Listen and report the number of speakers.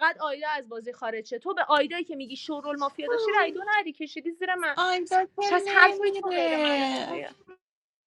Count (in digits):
2